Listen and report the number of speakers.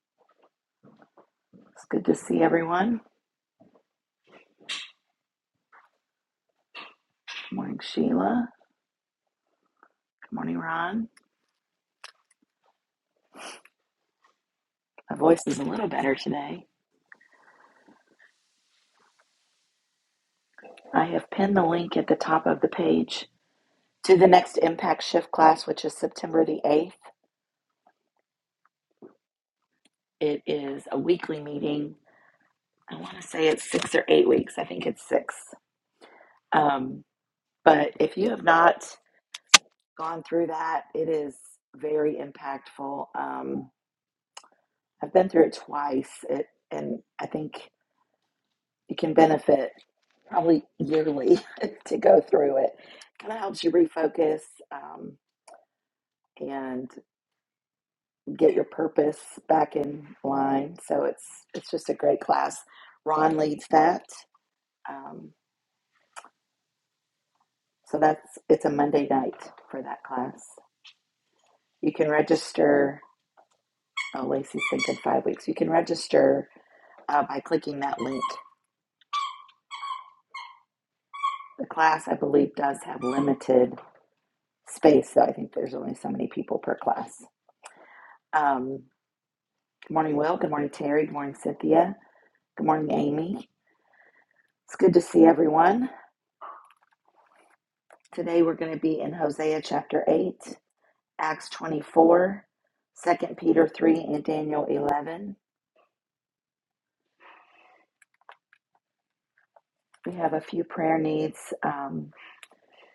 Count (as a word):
one